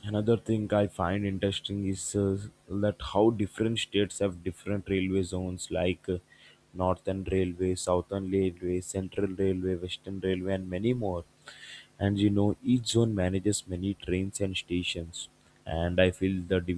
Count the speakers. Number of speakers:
one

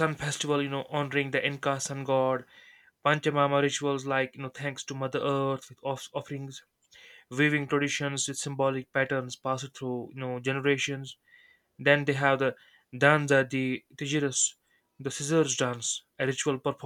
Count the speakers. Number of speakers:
one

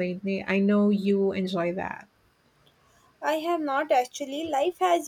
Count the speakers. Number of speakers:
two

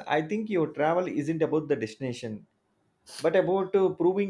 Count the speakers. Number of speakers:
one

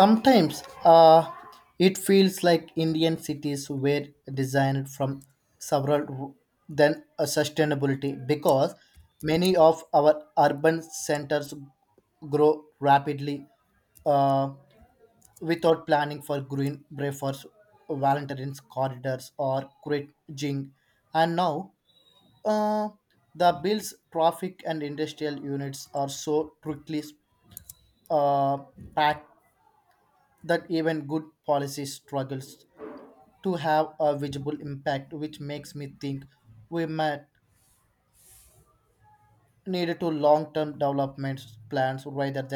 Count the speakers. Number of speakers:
one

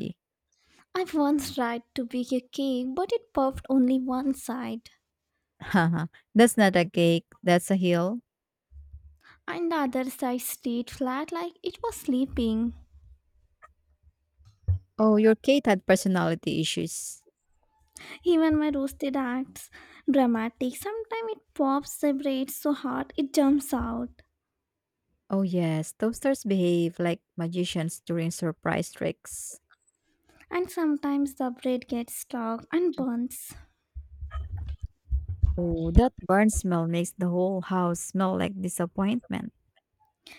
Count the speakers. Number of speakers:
two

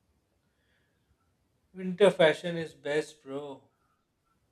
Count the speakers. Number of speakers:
one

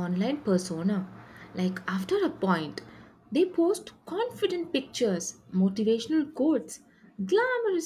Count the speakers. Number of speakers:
one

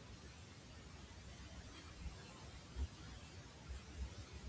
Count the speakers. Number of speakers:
zero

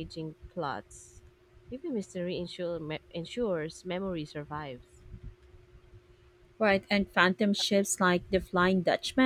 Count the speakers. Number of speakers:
two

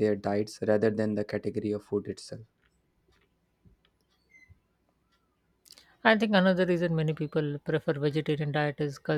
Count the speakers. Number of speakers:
two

